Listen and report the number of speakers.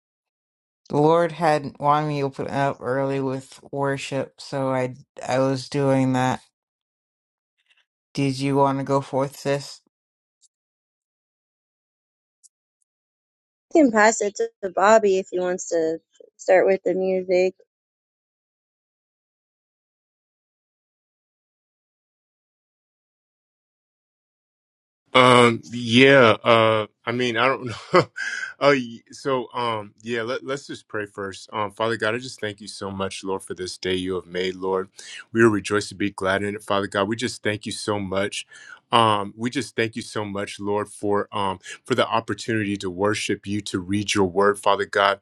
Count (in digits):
3